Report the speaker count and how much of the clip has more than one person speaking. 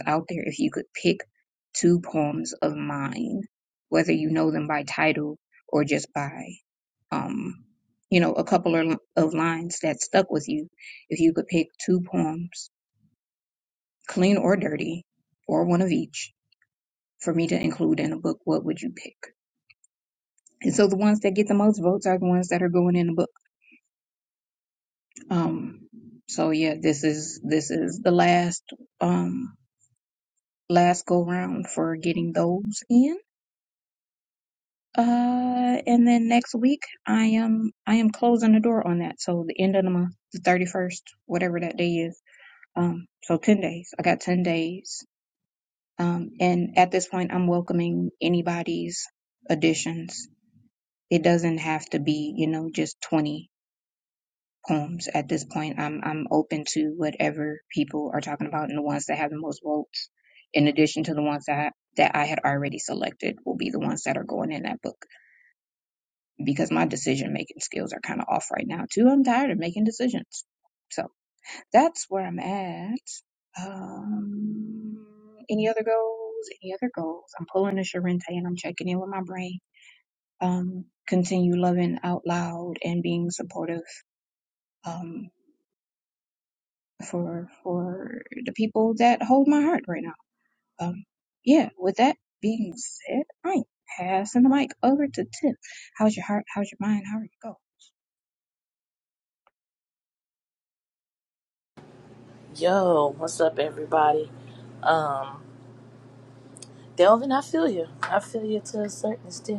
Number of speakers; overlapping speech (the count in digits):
2, no overlap